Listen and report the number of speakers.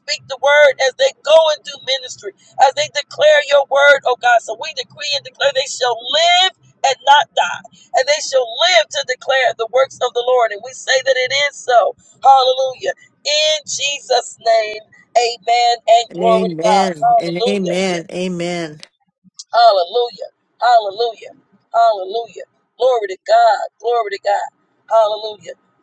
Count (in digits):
2